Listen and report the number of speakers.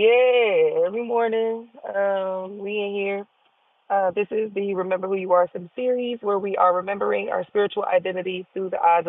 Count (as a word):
one